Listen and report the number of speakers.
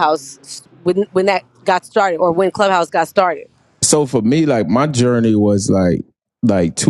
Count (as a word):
two